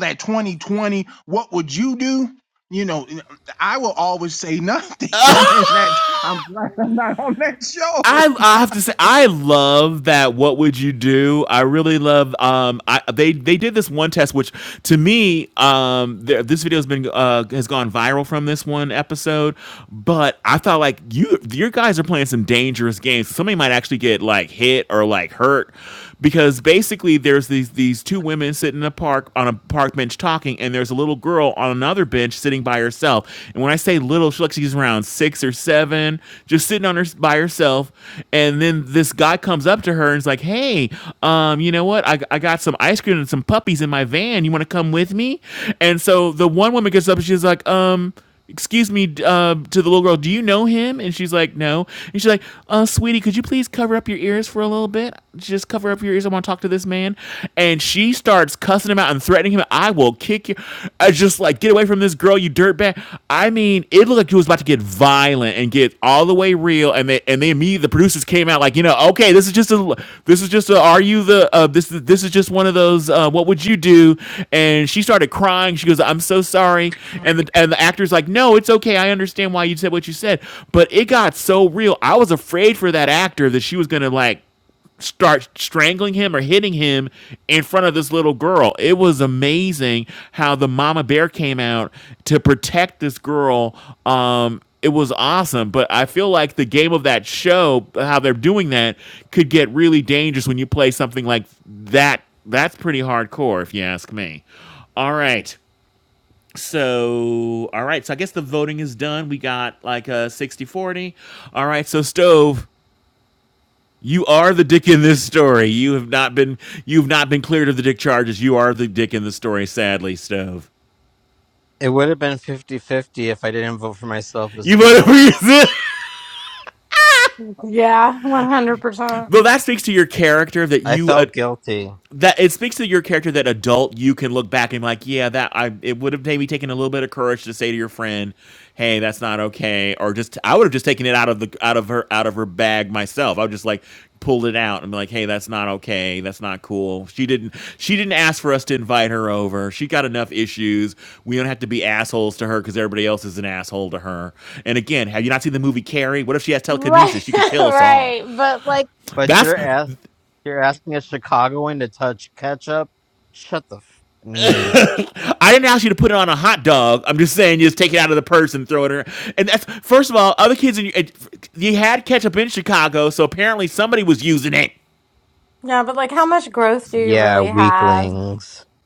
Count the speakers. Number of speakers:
4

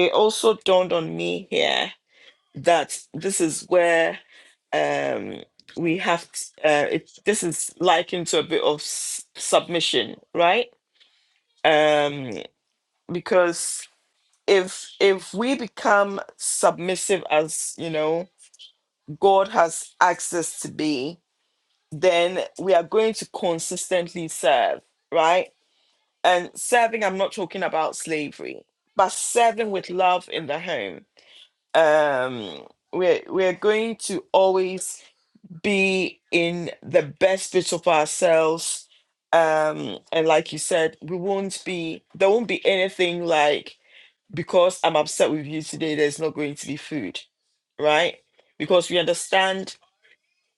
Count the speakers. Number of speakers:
1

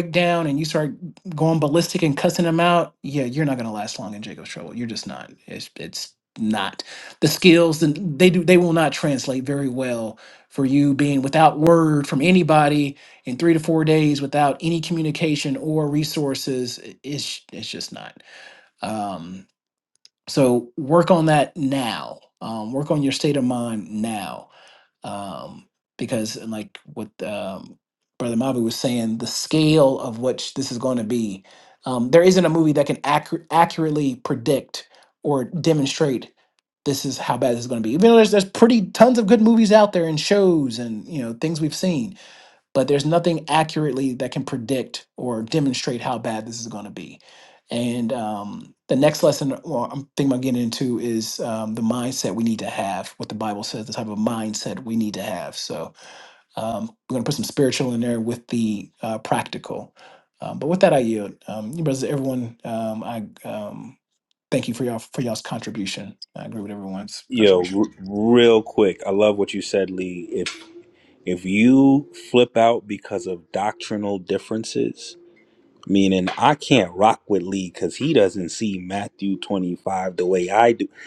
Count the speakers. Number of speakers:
2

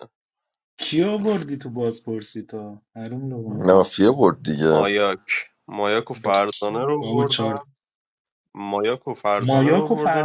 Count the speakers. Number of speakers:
3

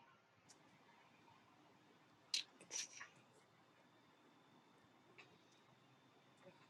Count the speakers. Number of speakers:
0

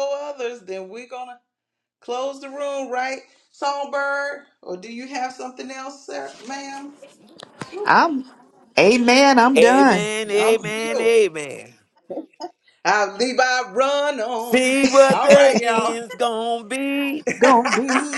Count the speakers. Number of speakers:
3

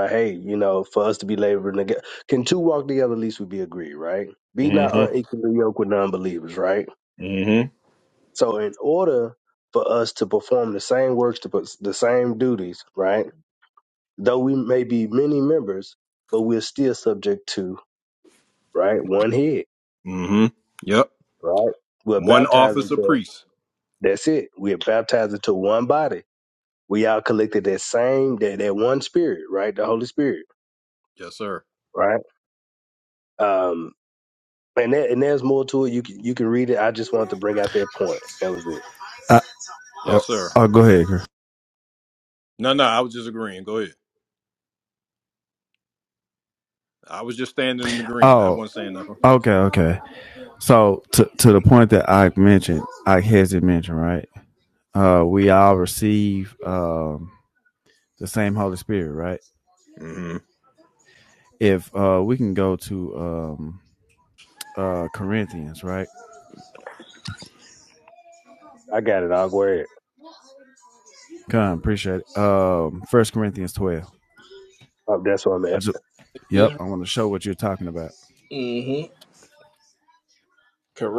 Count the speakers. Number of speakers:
4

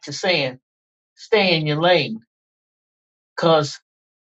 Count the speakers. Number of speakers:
1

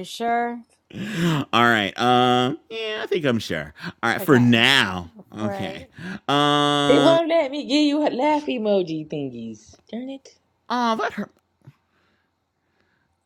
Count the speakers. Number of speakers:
3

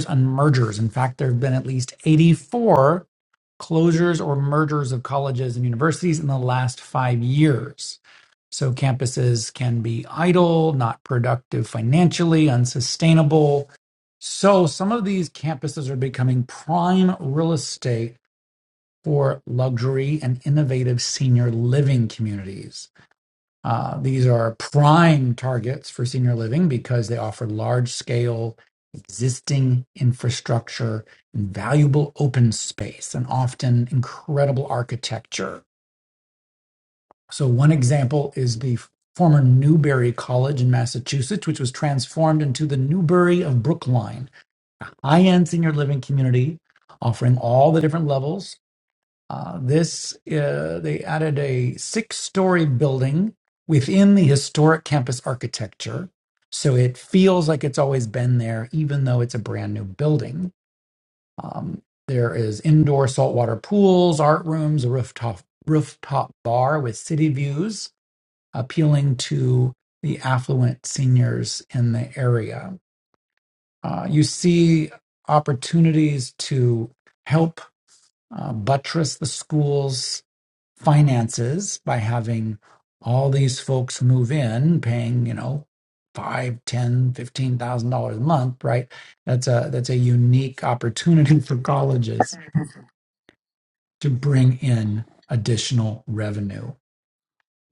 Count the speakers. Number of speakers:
1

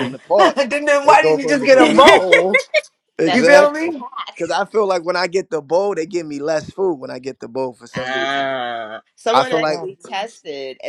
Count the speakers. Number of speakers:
3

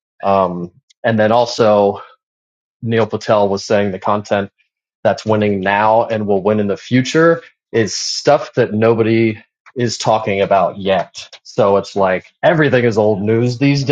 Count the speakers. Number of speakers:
1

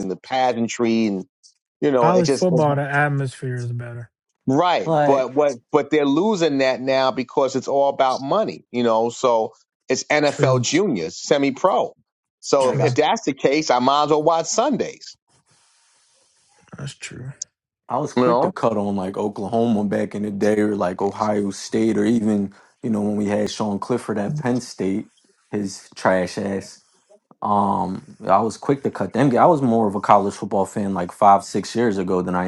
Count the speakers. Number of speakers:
3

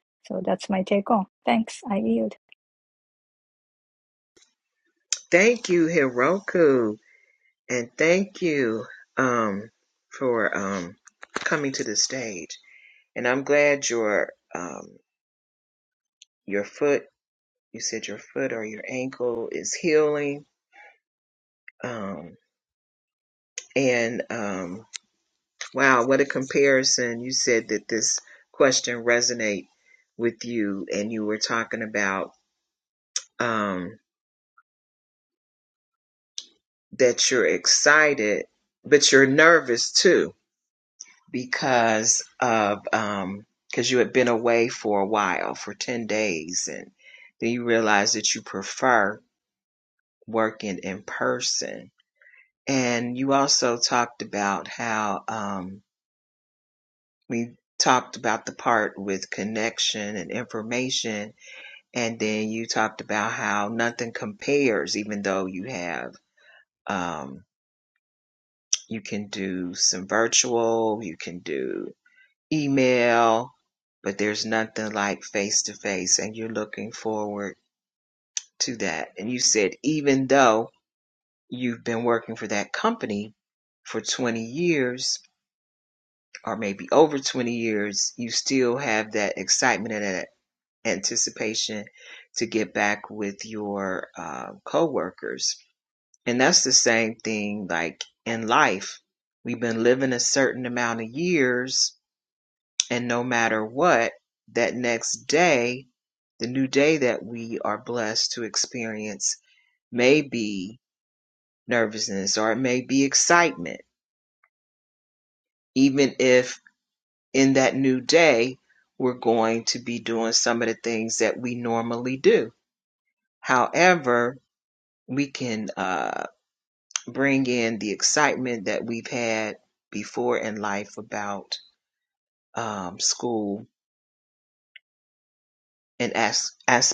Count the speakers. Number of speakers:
2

